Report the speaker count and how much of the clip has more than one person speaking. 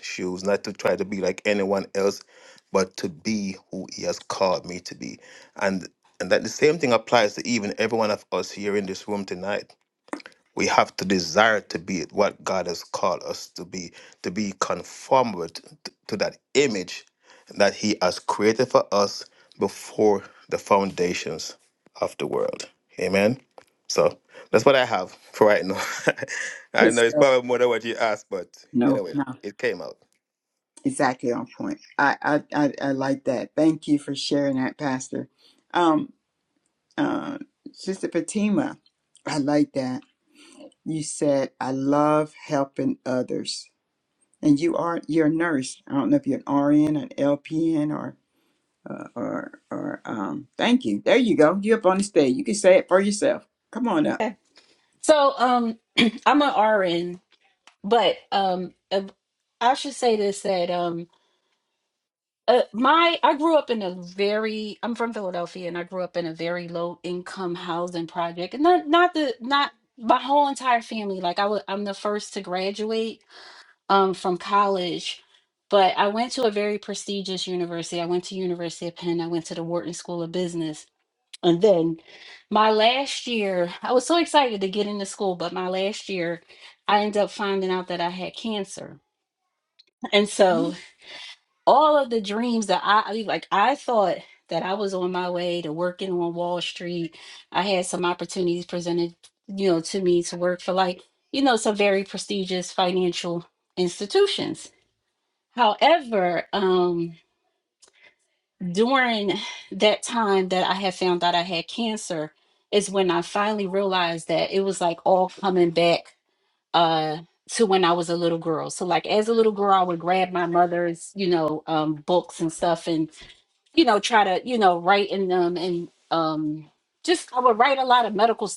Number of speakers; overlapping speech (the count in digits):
3, about 1%